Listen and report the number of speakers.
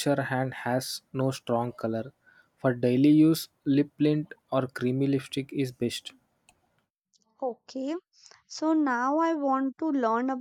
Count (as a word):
two